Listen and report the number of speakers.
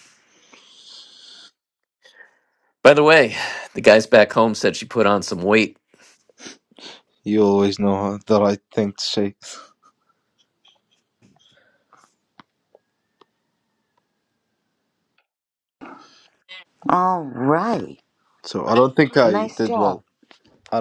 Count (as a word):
three